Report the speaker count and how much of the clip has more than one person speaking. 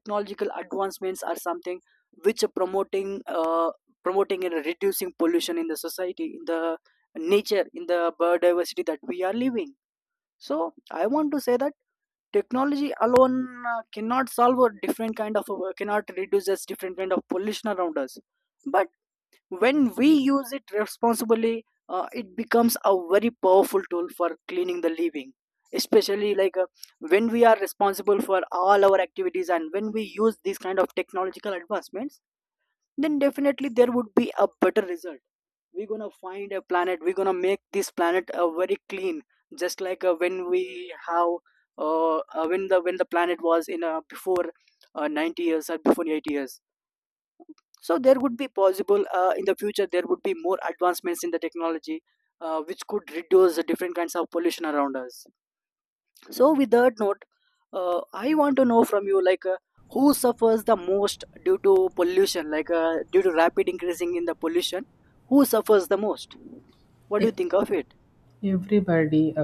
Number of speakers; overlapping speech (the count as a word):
two, under 1%